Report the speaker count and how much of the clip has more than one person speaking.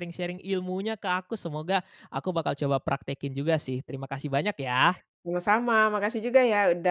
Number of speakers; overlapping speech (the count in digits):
2, no overlap